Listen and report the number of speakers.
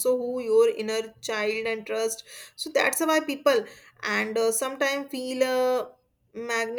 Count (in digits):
1